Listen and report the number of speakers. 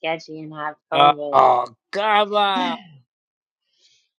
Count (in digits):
2